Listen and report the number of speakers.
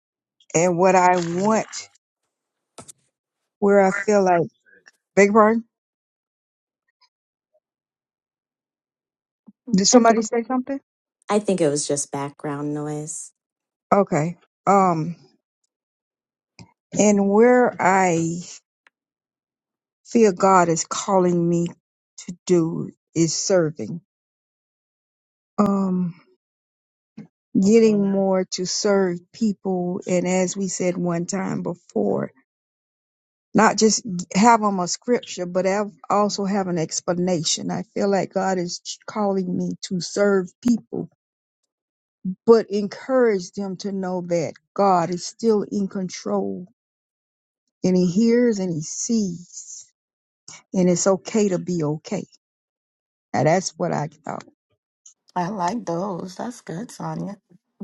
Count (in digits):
3